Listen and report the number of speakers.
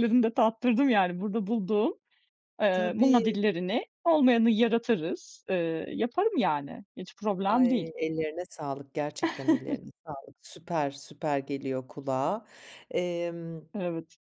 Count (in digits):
2